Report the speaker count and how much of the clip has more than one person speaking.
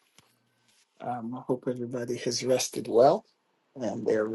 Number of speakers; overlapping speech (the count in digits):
1, no overlap